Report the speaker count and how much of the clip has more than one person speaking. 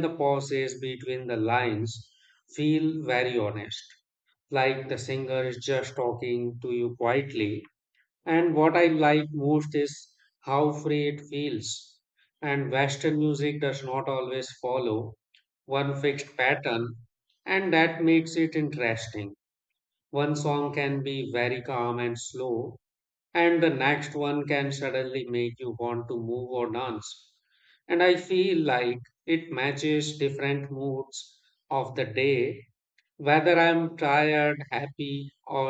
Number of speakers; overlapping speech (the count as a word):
one, no overlap